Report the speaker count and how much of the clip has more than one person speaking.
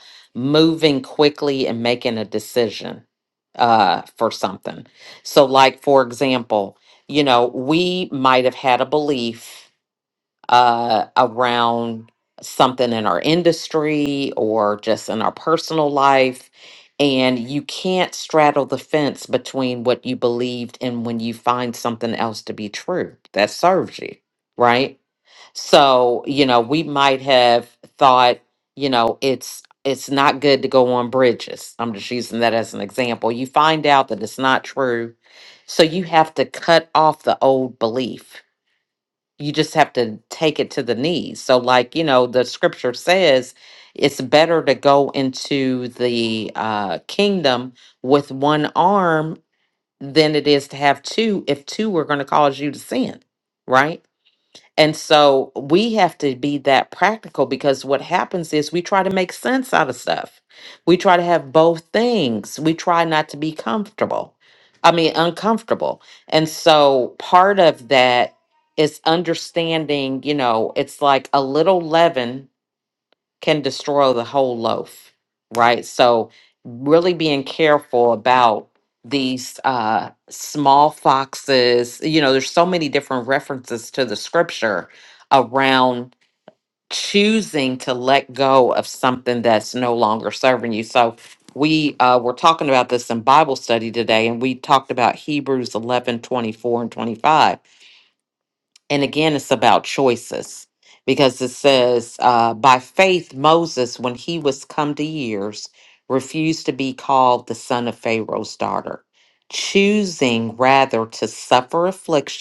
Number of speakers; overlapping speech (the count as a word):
one, no overlap